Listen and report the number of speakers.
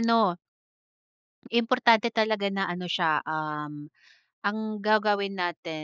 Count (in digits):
1